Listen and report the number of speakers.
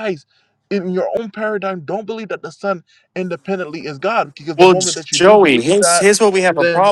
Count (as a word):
two